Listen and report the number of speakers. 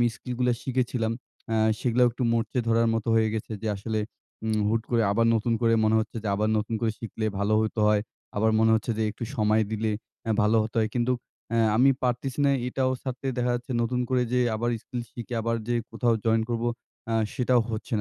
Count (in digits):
1